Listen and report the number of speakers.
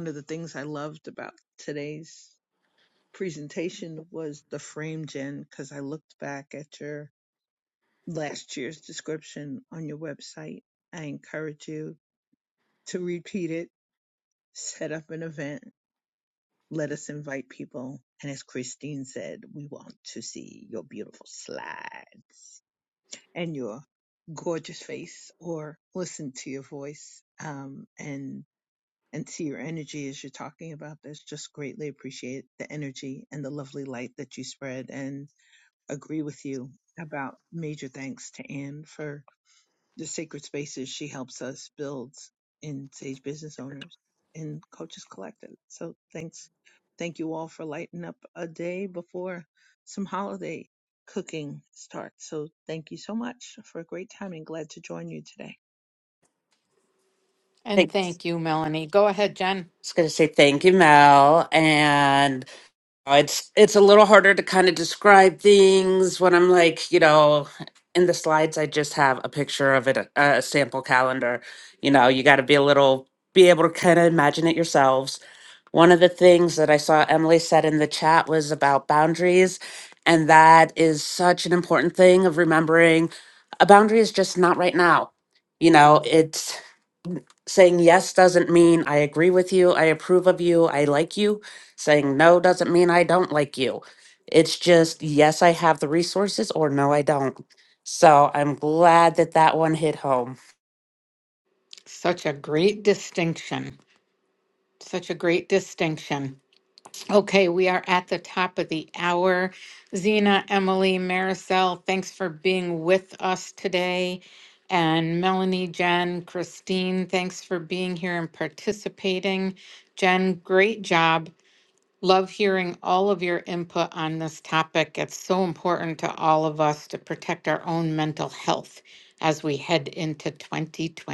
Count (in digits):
3